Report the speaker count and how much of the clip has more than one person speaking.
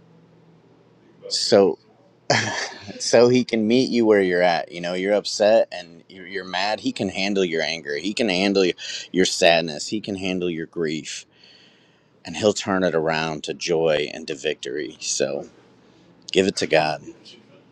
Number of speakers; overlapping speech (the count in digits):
1, no overlap